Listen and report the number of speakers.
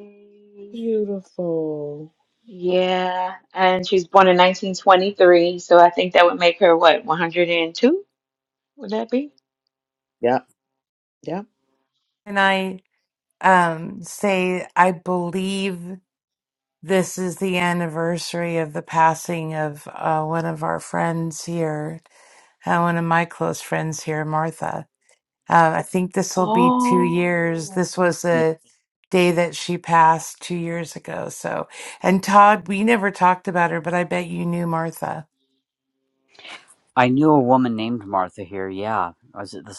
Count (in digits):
4